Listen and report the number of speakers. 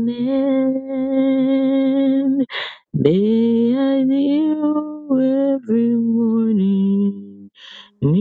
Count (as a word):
one